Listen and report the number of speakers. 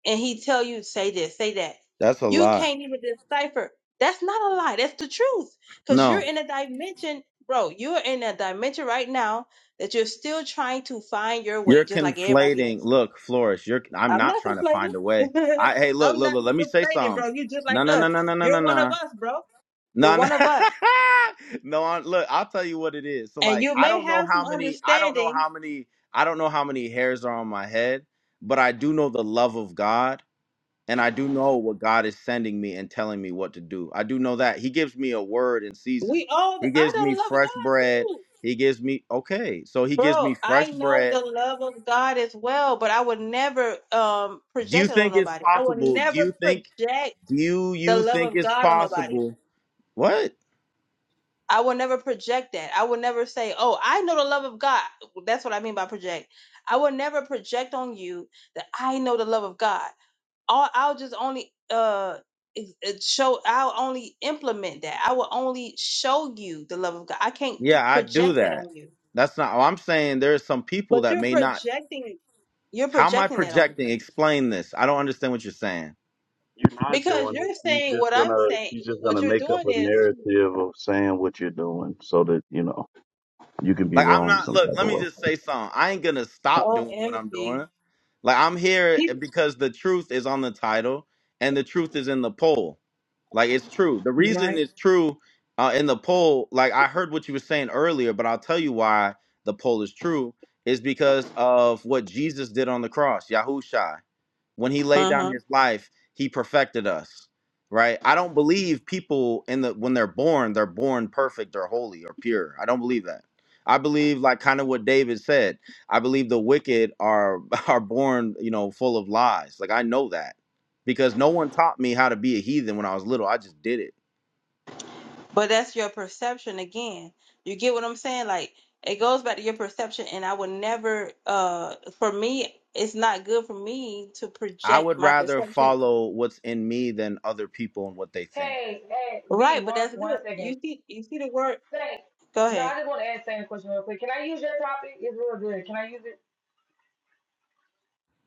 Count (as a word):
four